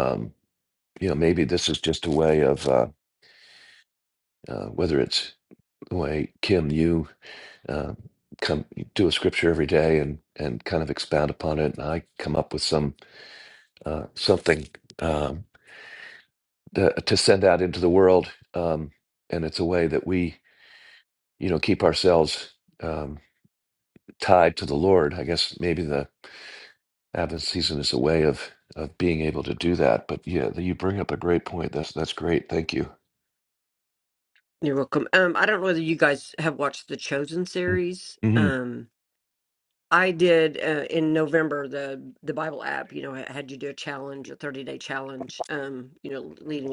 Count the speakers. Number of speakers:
2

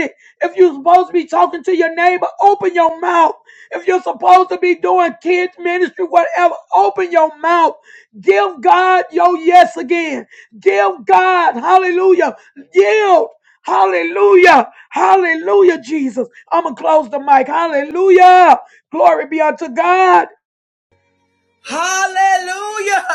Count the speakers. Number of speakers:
2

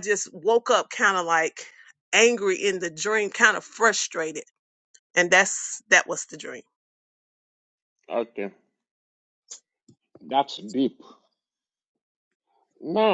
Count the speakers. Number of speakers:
2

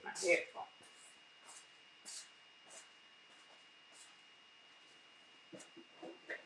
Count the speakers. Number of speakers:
0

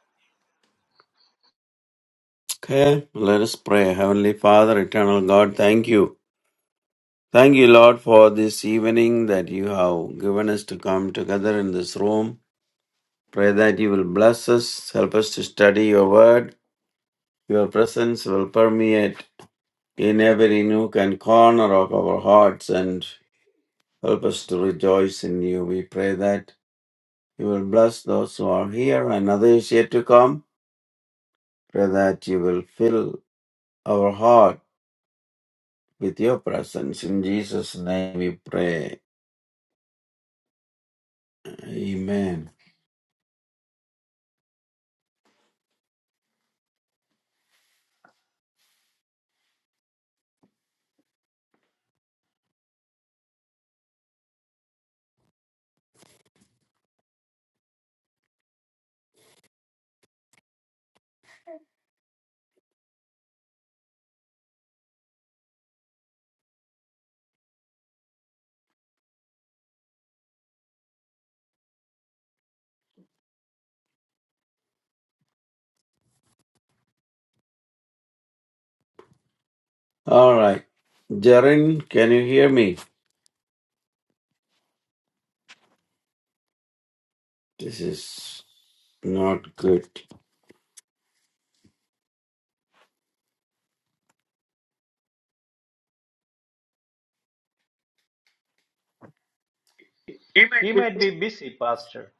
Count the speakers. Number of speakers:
2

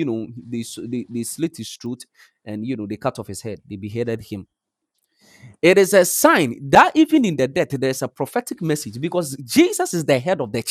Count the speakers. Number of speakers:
1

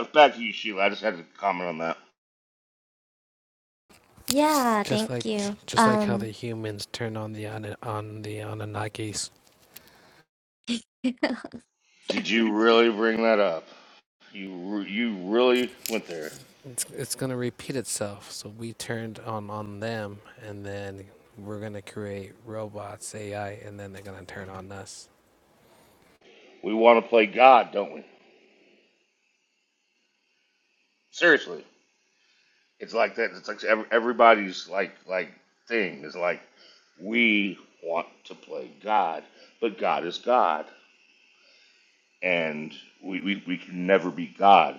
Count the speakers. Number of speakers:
3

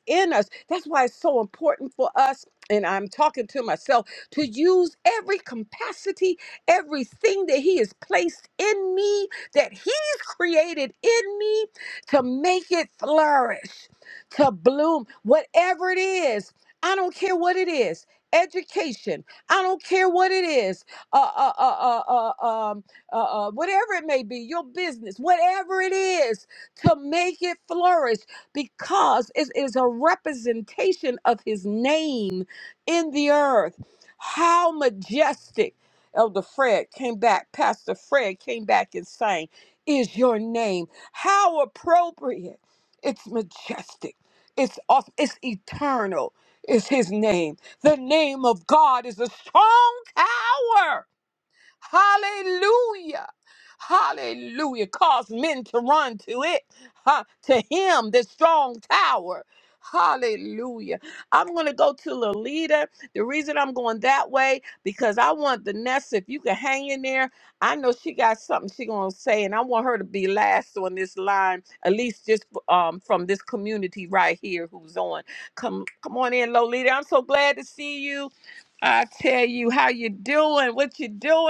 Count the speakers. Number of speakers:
1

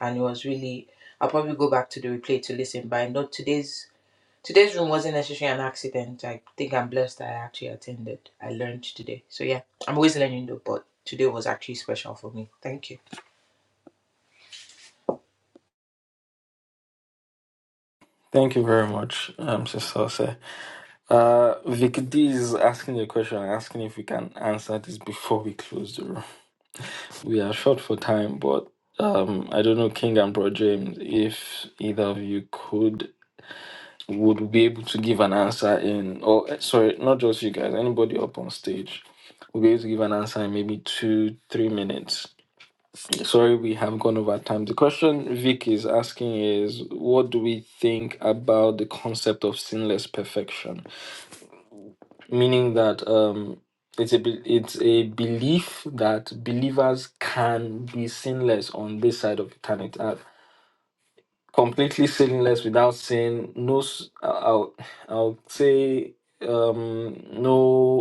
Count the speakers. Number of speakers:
2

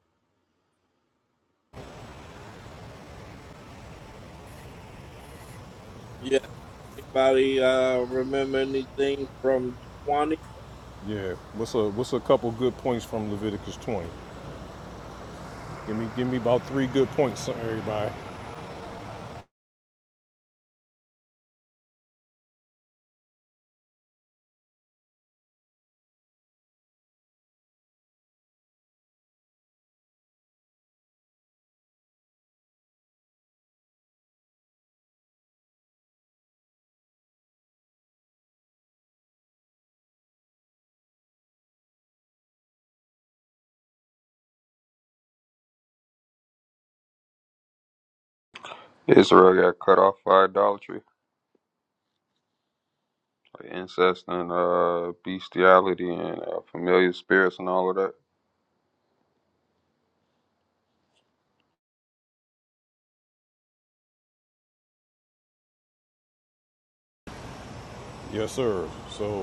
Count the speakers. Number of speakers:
3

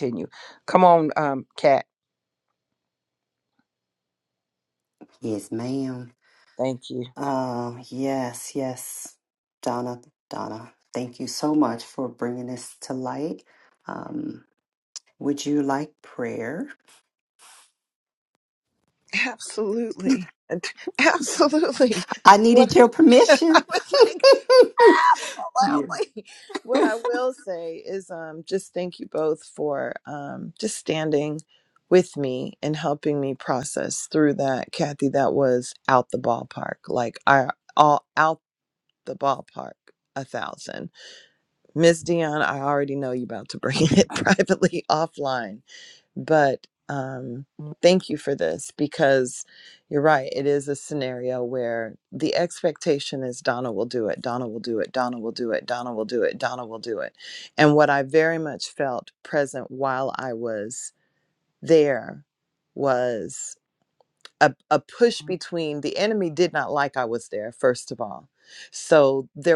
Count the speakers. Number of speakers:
3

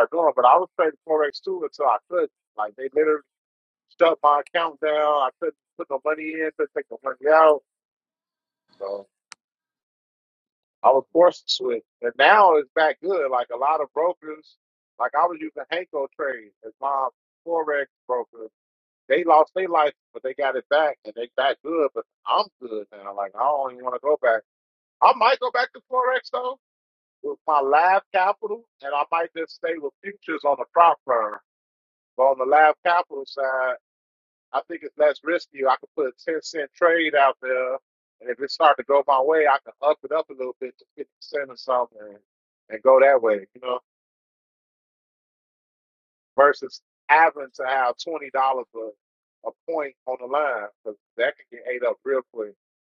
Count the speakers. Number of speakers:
1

